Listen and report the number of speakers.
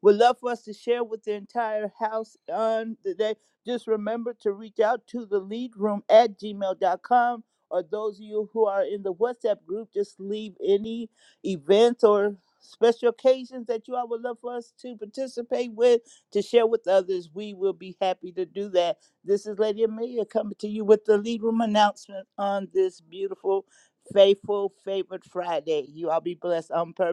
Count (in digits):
1